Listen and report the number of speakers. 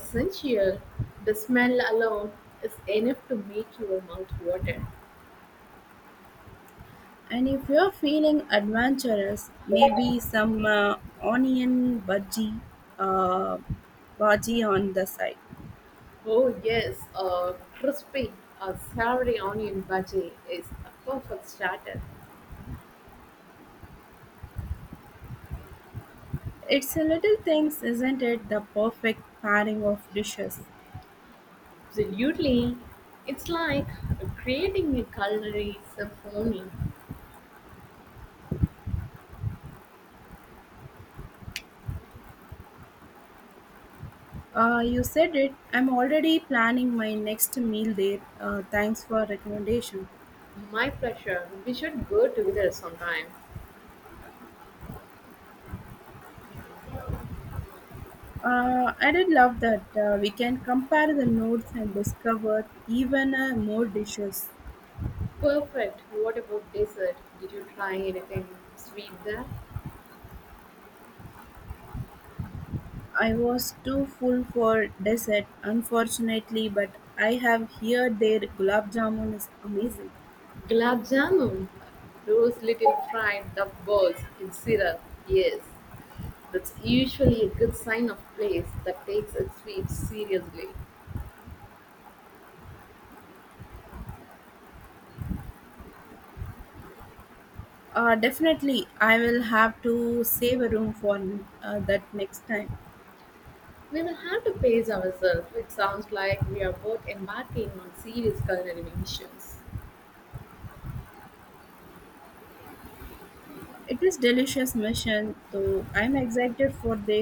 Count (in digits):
2